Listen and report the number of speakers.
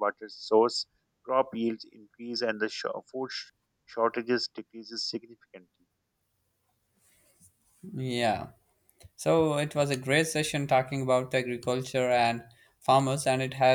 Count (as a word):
two